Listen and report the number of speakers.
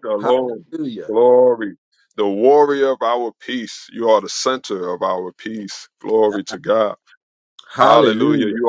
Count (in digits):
2